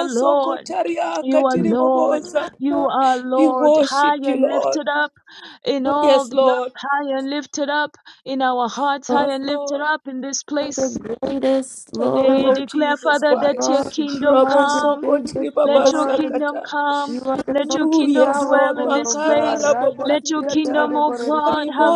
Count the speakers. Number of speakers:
3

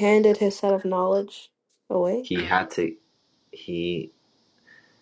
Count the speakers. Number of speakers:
2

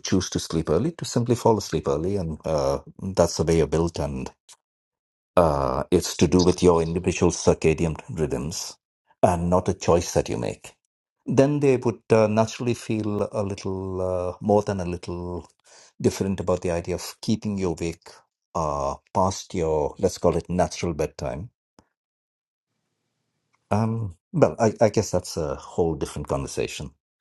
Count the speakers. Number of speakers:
1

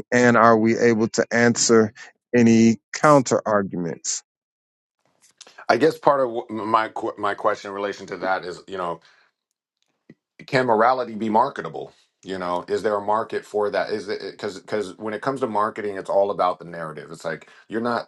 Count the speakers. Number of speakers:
2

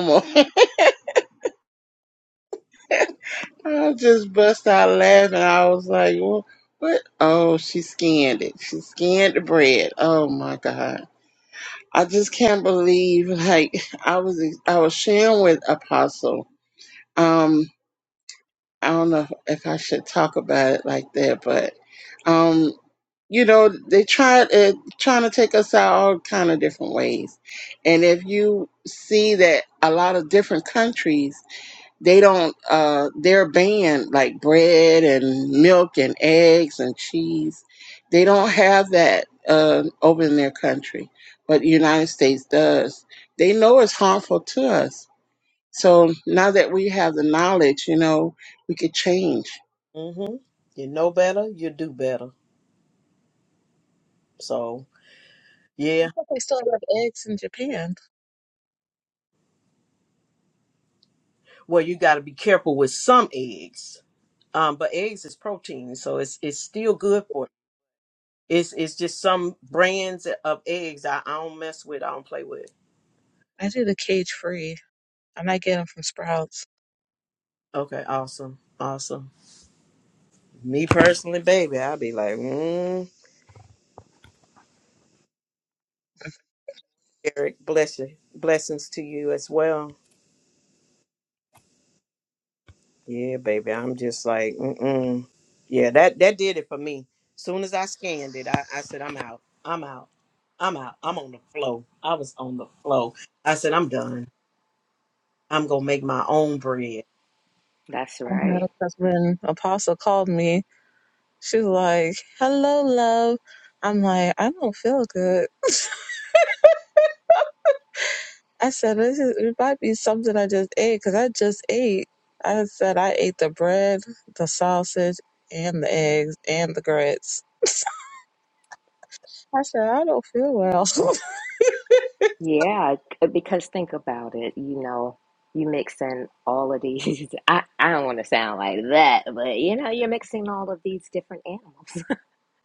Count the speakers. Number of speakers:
4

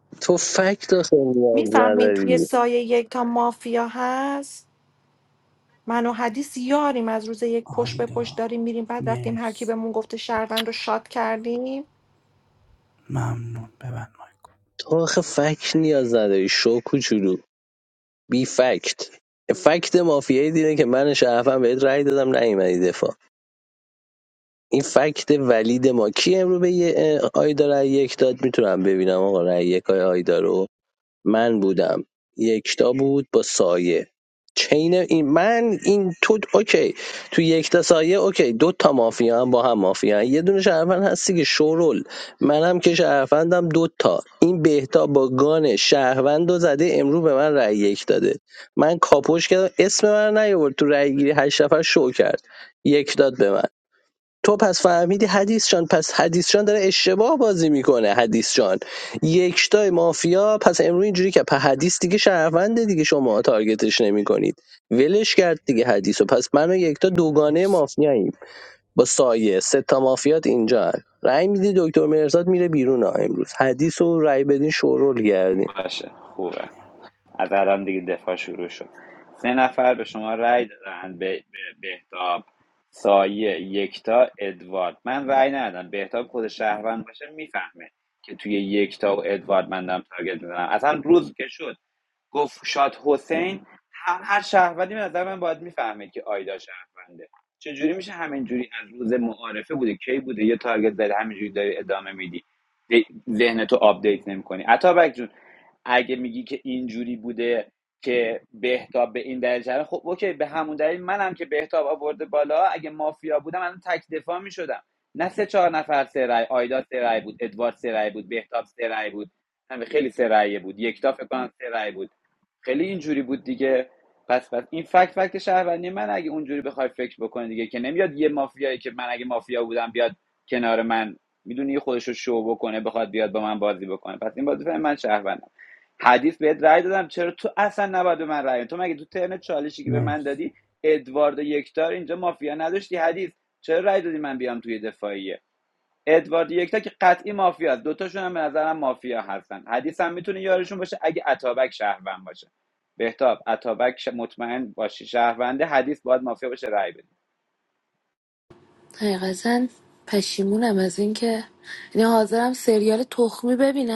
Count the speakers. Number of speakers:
5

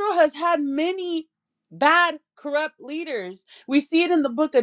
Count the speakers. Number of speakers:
1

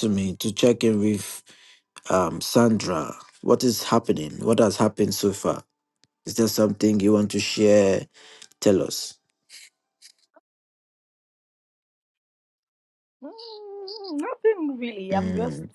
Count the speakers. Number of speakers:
2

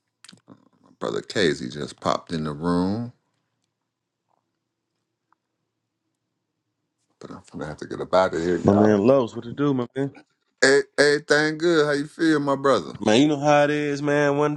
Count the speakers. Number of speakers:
2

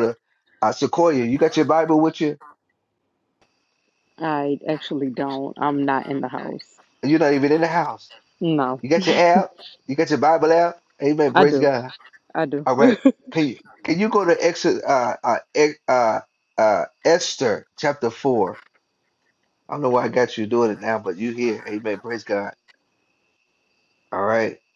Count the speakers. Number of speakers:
2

